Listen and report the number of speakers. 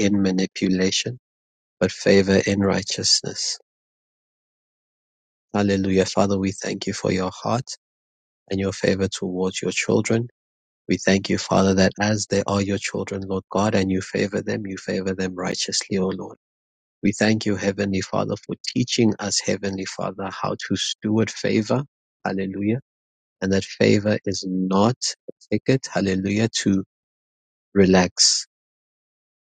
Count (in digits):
1